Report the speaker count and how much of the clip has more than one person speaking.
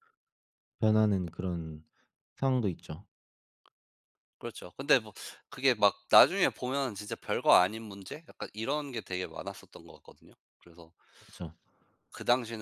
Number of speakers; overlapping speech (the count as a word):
two, no overlap